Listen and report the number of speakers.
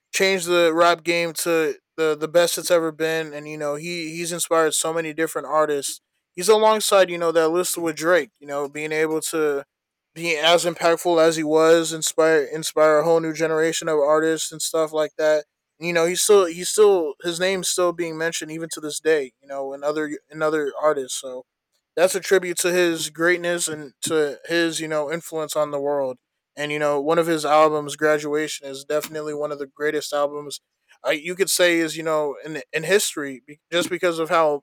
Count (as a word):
one